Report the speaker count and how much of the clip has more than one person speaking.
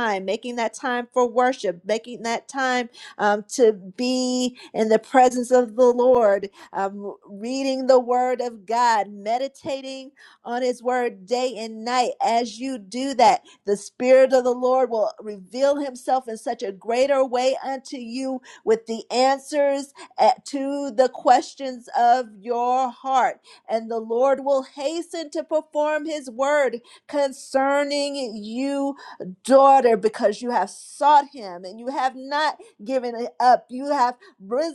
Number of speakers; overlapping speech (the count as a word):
one, no overlap